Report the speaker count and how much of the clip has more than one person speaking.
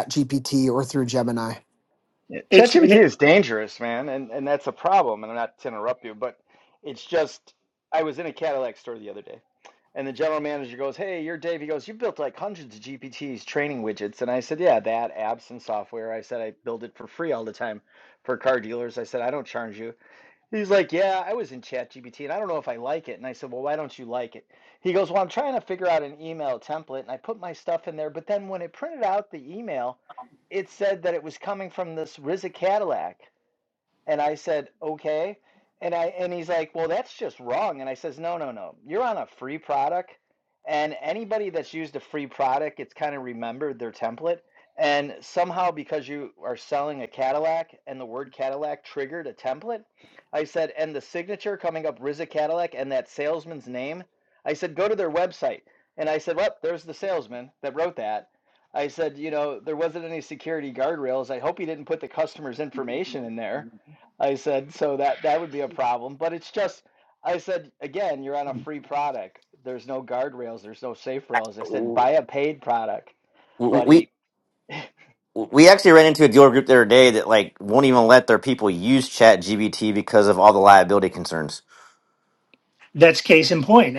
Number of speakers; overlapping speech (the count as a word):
four, about 1%